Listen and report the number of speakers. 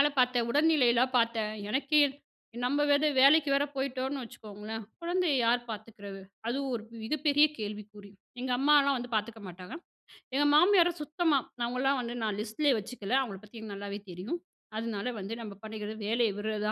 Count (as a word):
one